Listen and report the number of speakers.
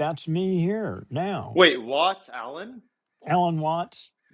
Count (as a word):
two